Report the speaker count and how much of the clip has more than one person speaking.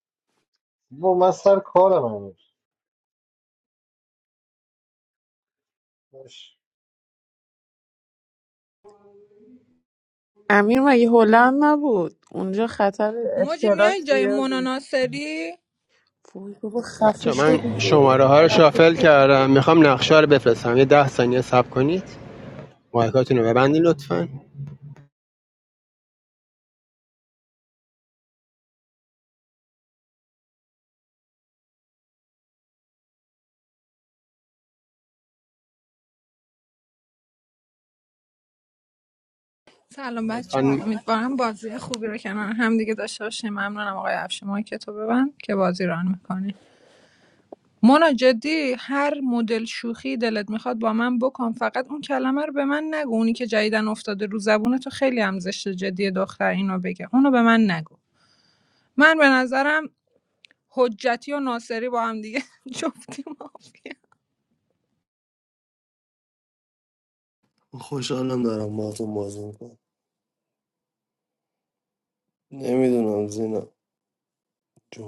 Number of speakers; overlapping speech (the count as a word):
five, about 3%